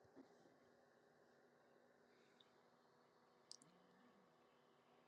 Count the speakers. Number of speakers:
zero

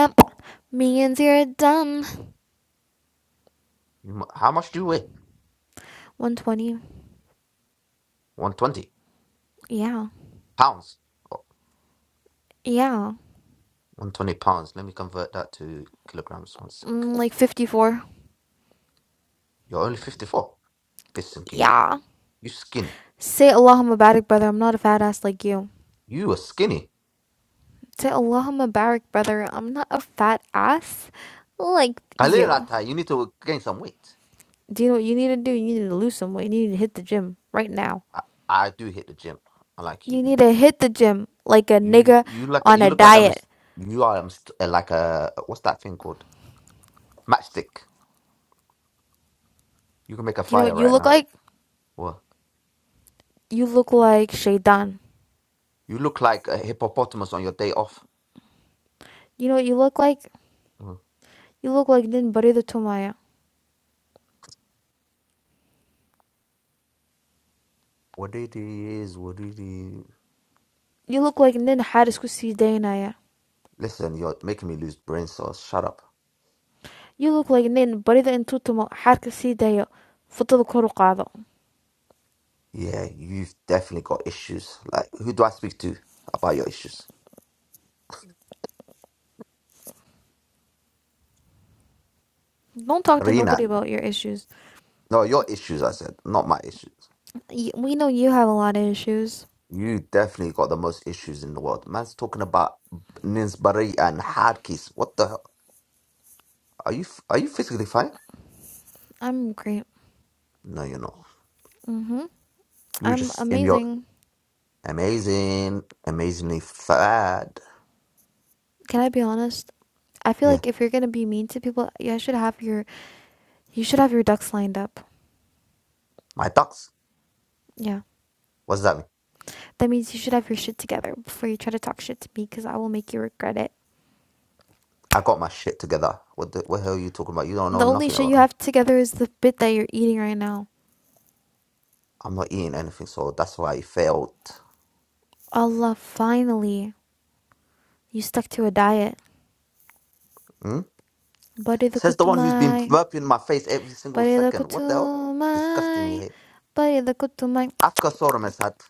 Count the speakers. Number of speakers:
two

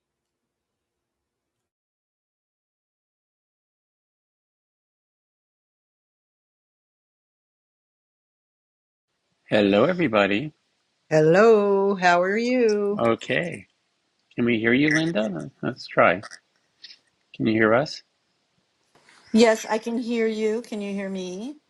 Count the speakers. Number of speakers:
three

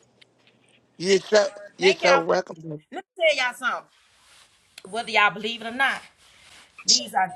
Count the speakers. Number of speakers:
two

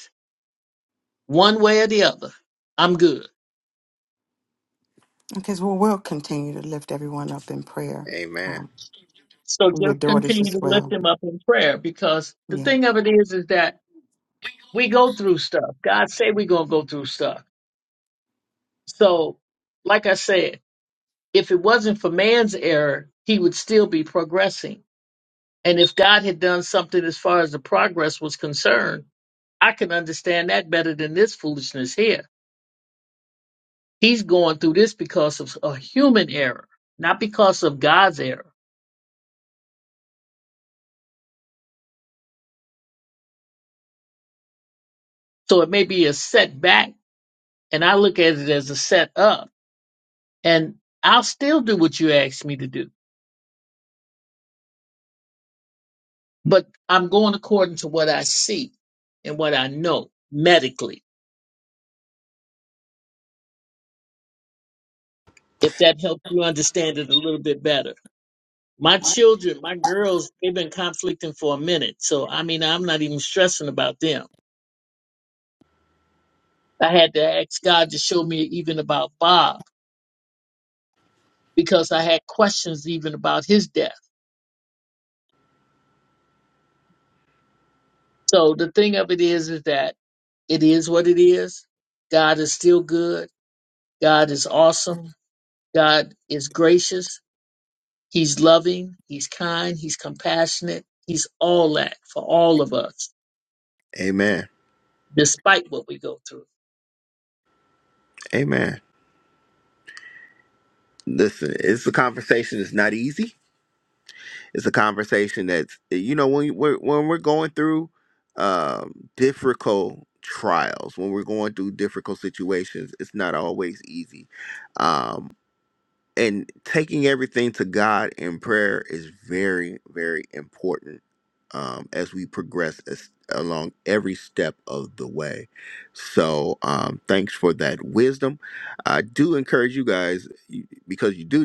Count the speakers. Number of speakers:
three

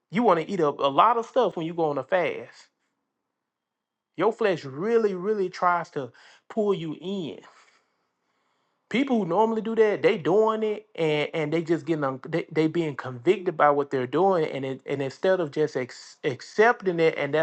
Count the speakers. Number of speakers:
one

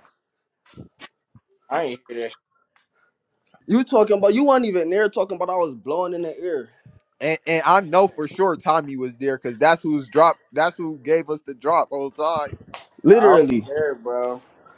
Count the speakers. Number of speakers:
three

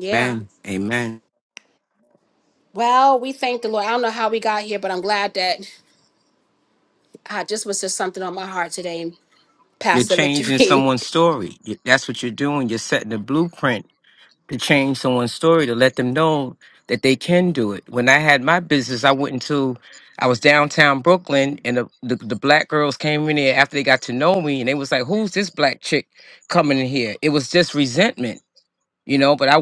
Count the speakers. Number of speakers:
two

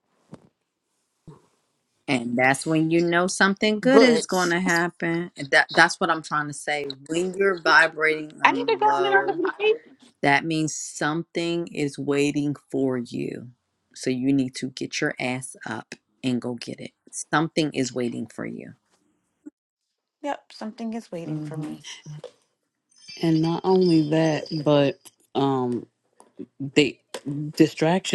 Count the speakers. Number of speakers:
three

